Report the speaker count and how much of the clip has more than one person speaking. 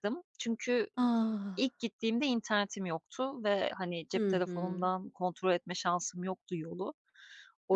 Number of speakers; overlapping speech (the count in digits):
2, about 10%